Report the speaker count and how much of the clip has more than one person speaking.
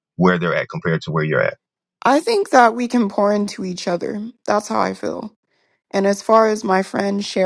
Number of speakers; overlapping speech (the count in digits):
2, no overlap